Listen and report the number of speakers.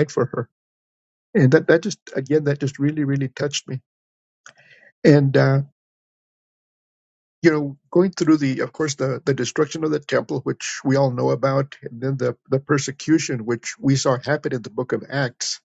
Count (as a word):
one